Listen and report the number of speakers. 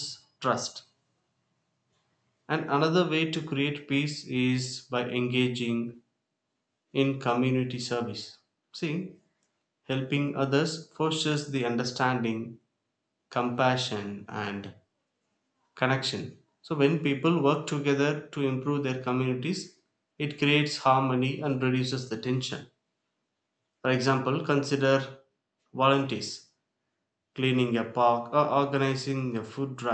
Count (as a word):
one